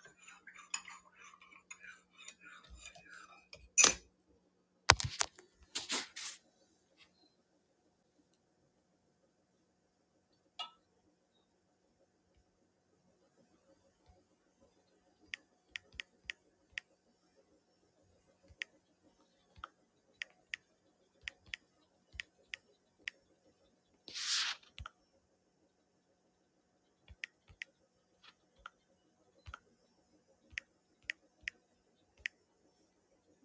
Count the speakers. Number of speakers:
zero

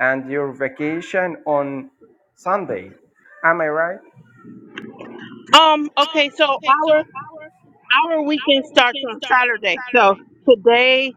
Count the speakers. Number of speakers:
two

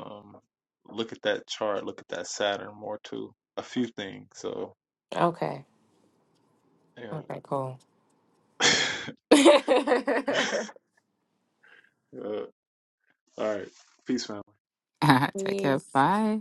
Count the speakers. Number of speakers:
three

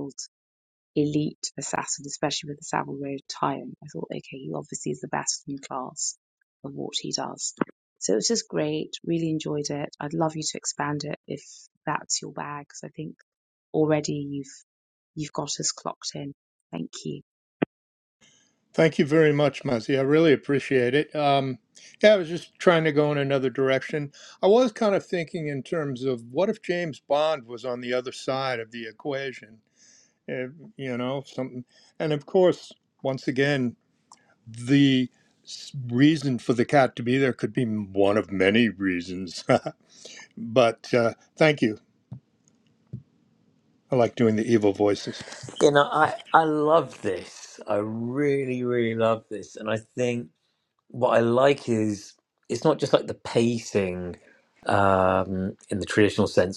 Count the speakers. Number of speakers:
three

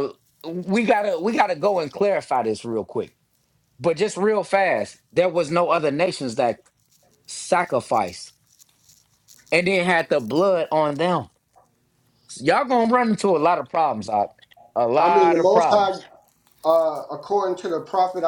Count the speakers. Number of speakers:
two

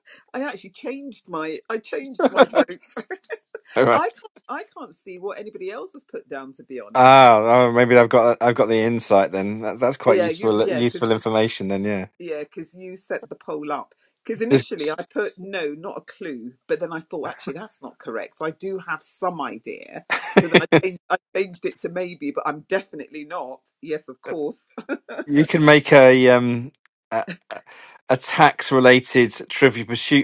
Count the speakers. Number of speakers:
two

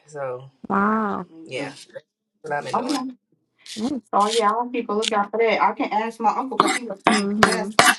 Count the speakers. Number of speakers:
three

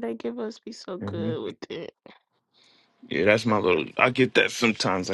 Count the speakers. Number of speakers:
two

